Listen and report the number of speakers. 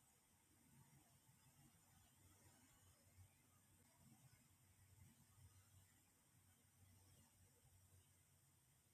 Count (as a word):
zero